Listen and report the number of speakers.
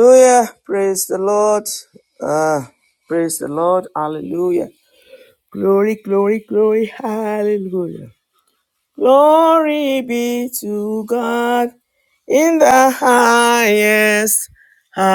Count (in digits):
1